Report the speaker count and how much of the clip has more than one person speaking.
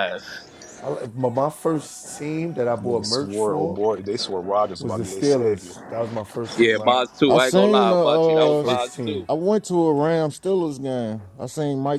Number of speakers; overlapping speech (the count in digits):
4, about 35%